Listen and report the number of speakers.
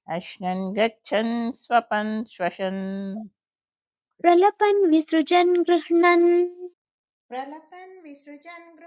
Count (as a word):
three